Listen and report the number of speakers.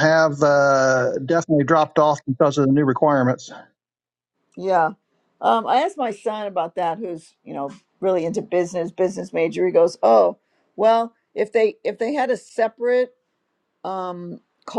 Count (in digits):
2